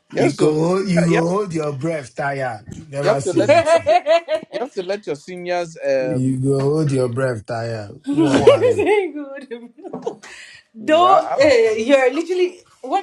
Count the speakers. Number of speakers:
3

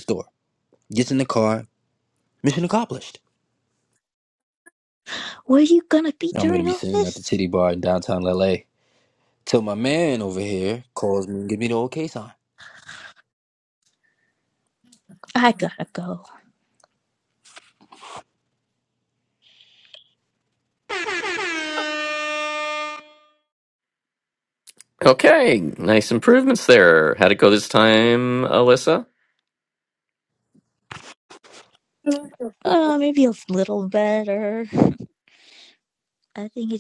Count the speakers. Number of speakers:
3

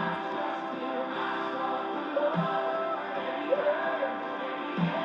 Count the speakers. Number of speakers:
0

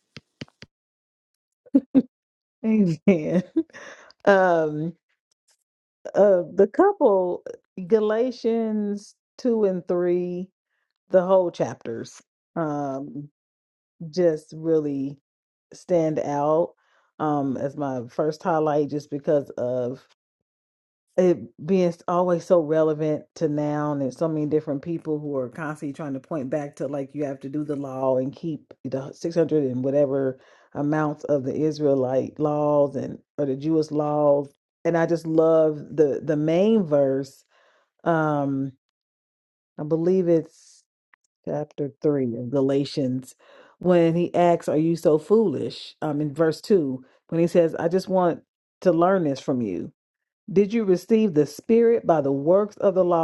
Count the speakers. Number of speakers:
1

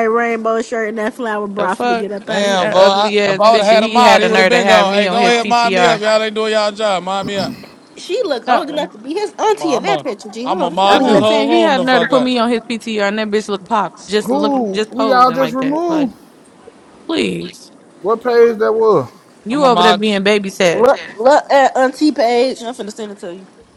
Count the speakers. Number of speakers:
4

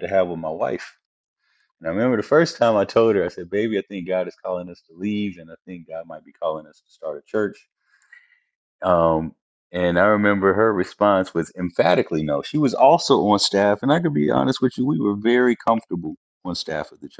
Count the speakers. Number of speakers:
1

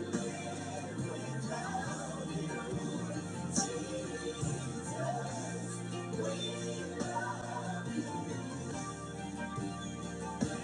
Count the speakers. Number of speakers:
0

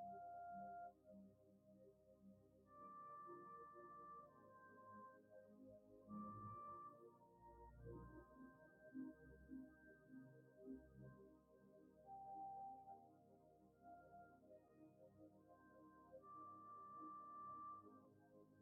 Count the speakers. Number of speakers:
0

